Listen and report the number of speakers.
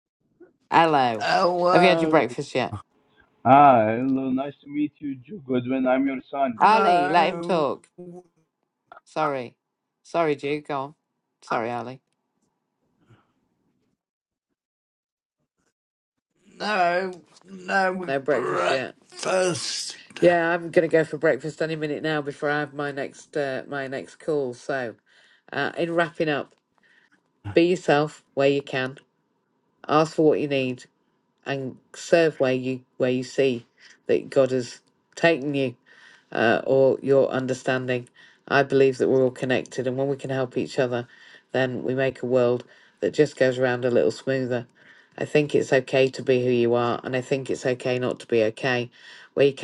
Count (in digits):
3